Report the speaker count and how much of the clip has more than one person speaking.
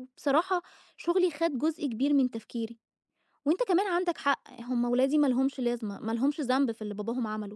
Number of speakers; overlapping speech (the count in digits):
1, no overlap